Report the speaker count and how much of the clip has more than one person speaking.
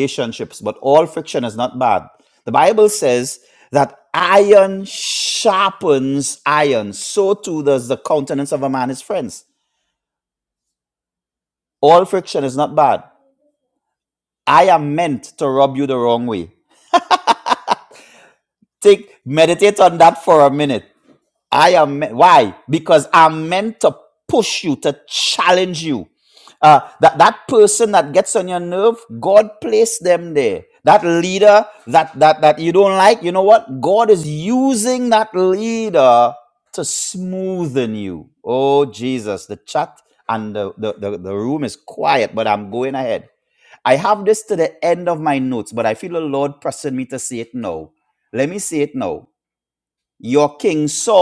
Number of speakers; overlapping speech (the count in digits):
1, no overlap